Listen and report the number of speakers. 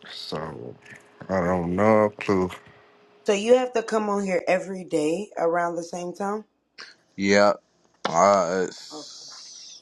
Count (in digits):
3